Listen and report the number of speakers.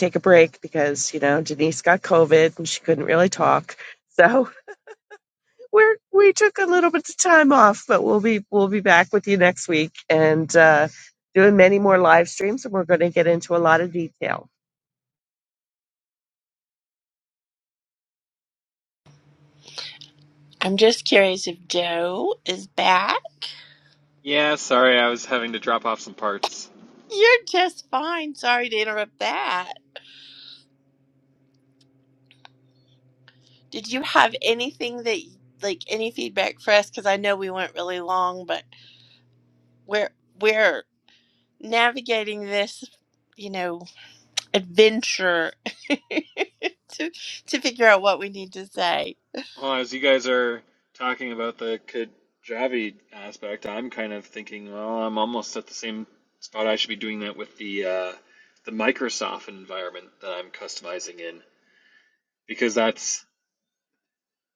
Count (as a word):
three